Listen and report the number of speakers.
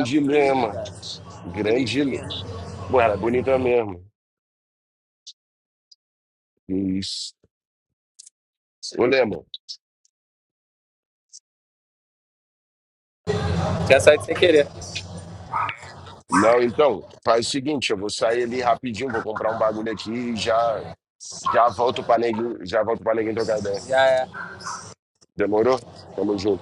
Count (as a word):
two